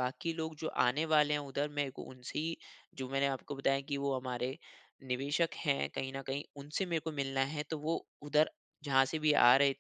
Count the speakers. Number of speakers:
one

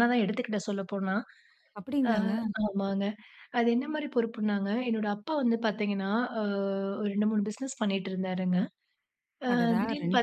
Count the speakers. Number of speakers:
two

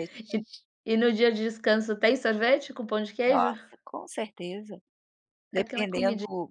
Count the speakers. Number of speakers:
two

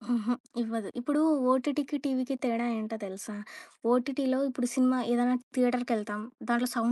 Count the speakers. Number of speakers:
one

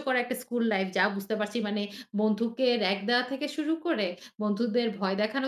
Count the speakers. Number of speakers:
one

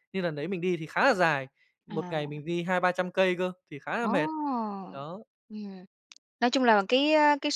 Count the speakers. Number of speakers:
two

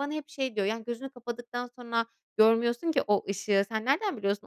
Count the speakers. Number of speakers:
one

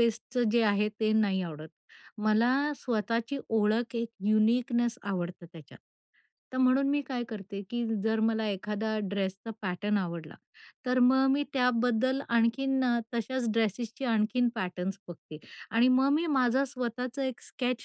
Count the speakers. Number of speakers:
one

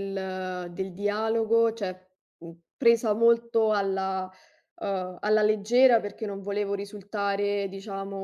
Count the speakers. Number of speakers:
one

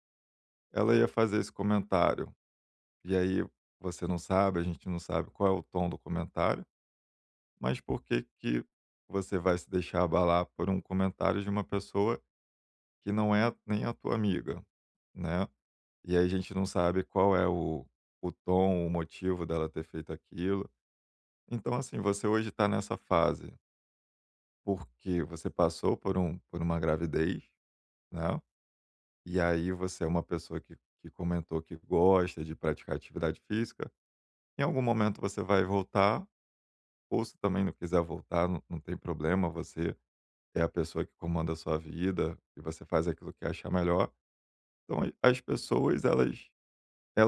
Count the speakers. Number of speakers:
one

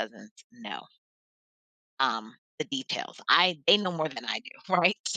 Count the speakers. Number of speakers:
one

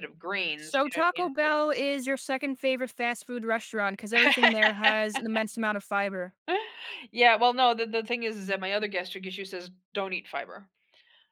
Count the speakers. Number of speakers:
two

